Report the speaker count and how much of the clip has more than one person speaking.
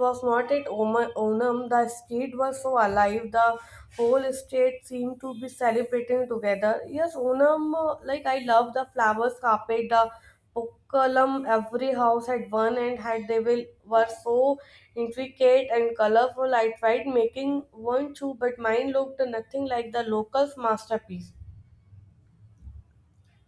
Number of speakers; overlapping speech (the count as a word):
one, no overlap